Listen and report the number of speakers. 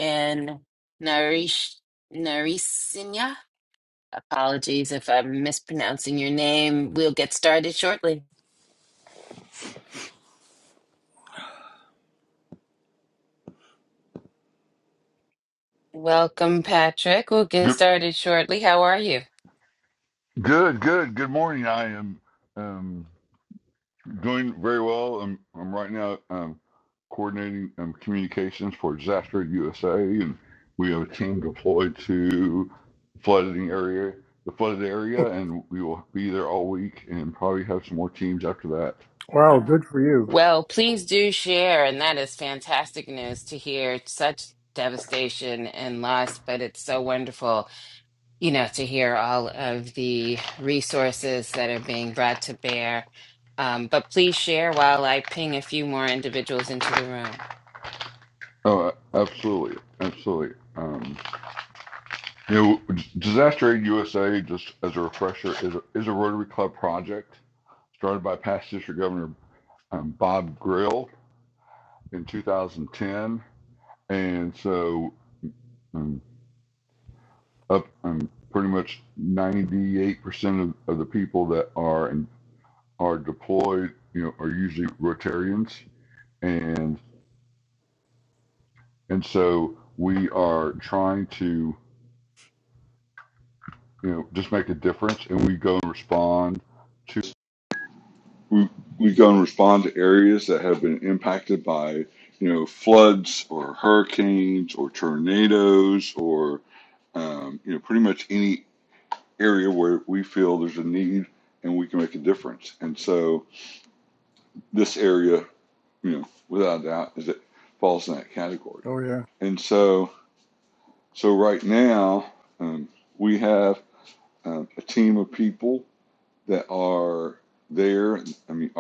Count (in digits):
3